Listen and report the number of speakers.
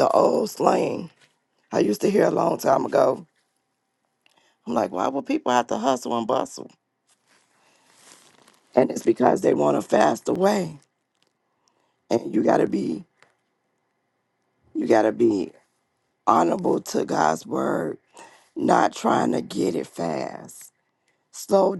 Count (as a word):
one